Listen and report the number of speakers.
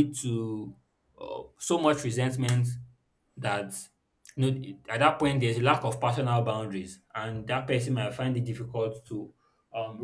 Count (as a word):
one